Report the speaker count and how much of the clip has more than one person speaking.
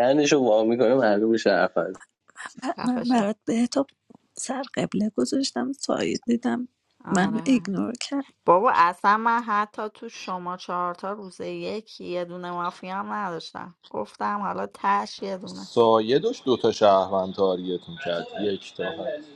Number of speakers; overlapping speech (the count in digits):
4, about 5%